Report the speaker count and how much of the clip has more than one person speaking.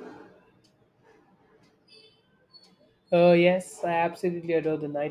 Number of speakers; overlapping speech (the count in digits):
1, no overlap